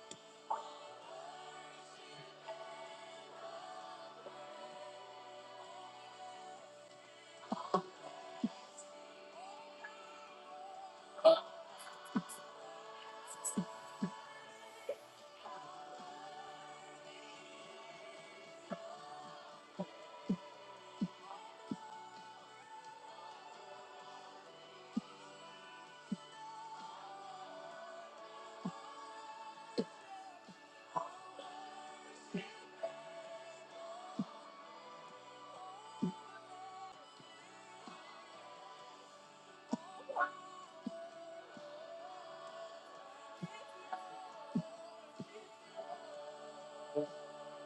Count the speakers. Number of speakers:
zero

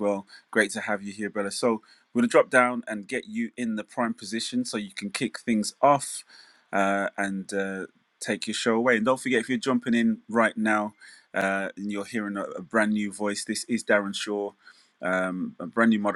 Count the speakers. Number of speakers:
one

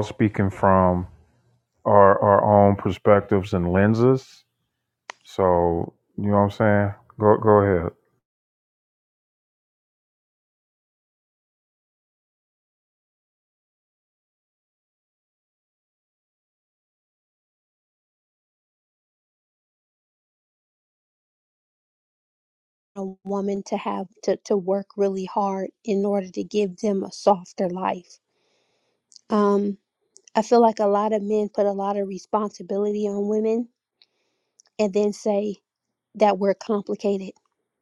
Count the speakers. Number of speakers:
two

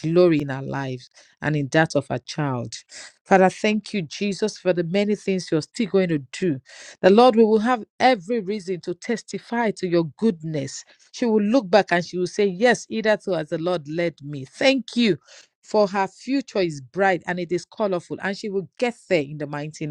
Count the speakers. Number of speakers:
one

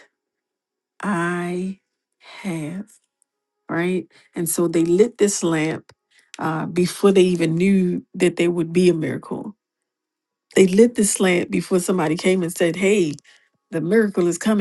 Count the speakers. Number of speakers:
one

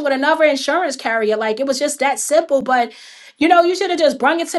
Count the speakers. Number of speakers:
one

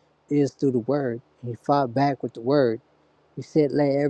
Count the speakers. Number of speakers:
one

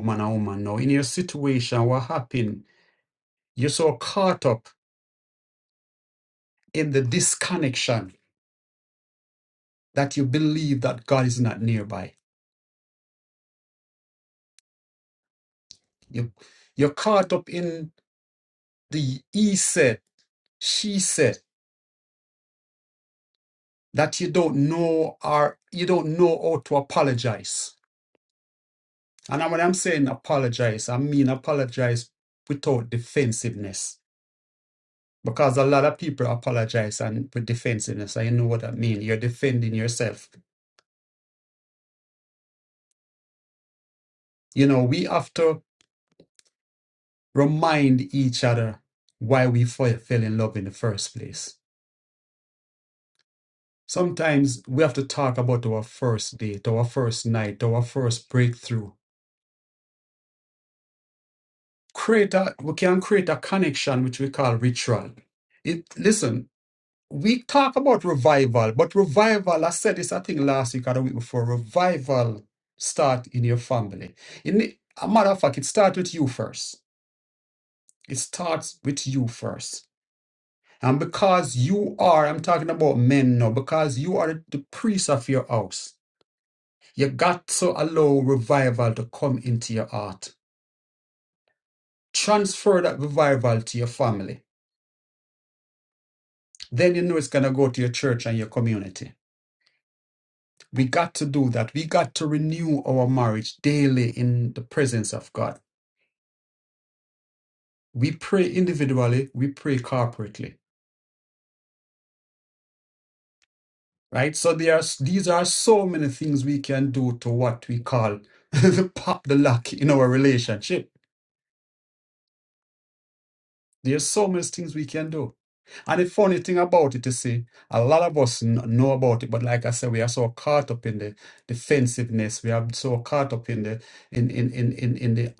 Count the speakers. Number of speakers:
one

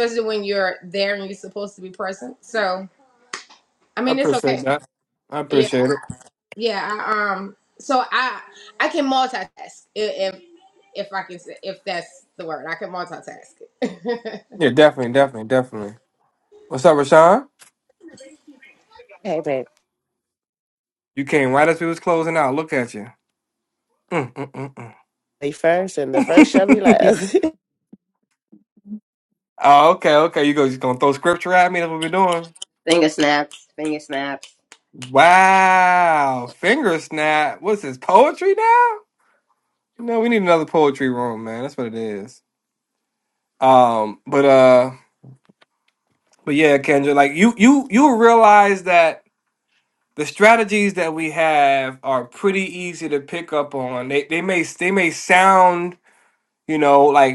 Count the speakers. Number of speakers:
four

